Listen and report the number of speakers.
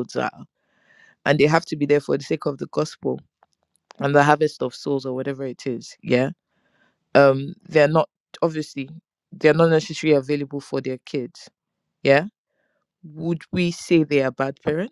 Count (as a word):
one